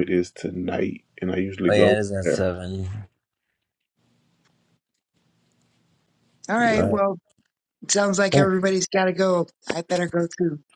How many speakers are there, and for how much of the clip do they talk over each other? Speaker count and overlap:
3, about 12%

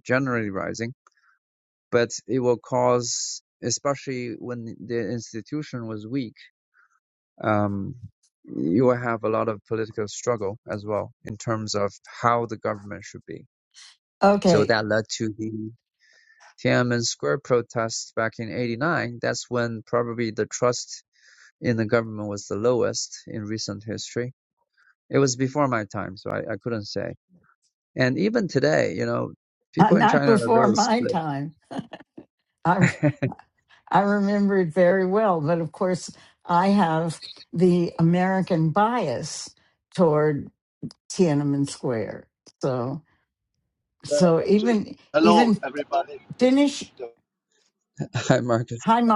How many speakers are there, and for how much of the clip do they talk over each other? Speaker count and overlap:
3, about 4%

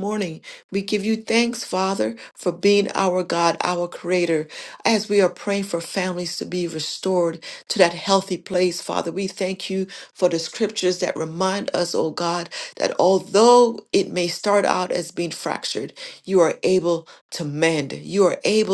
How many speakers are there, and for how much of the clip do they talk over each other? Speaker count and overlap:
1, no overlap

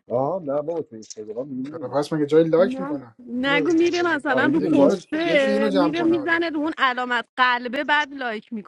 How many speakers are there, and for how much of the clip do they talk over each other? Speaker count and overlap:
3, about 42%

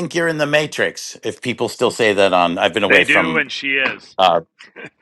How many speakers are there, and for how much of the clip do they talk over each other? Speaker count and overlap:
2, about 11%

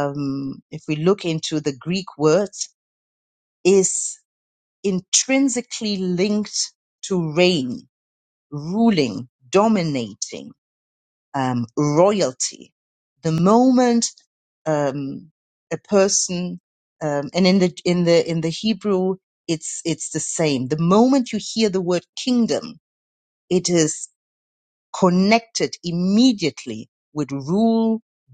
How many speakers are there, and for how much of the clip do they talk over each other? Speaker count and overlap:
1, no overlap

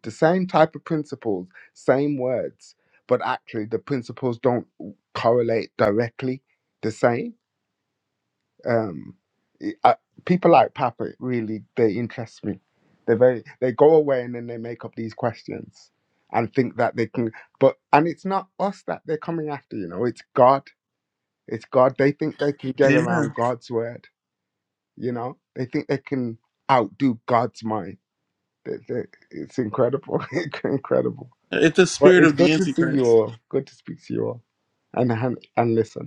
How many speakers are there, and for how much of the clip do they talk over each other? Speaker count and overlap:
2, about 4%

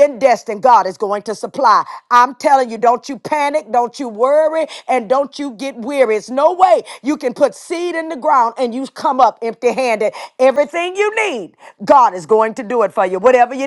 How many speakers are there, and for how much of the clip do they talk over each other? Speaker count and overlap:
1, no overlap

